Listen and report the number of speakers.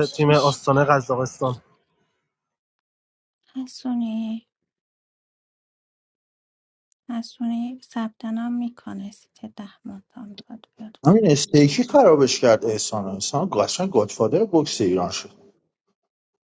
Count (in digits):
3